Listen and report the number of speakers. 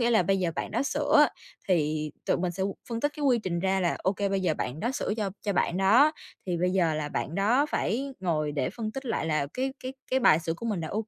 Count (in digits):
1